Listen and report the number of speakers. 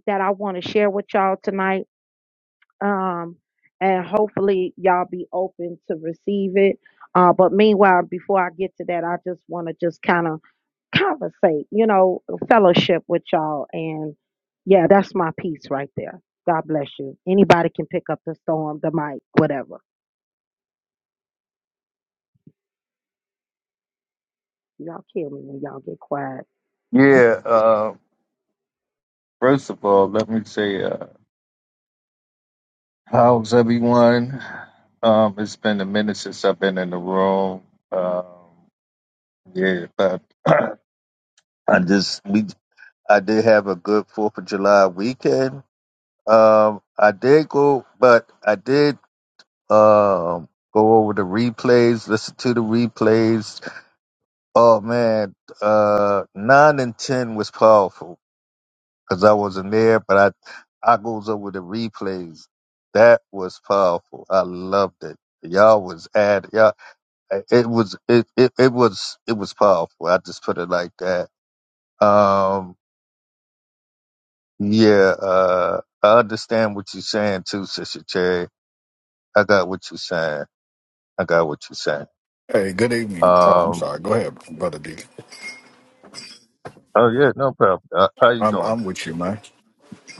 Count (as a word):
three